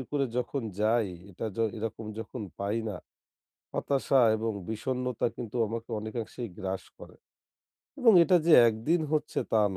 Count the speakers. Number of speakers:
one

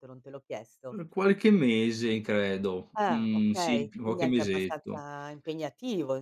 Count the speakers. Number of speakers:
two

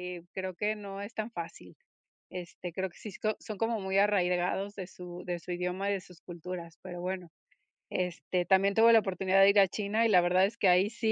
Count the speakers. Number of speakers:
one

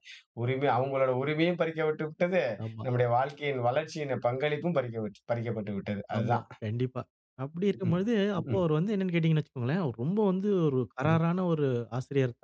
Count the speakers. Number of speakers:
two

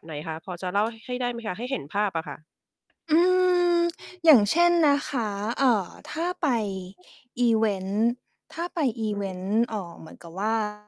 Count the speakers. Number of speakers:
two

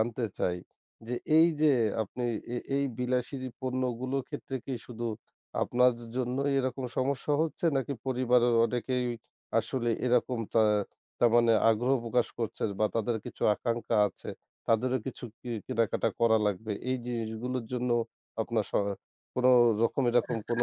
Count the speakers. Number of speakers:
one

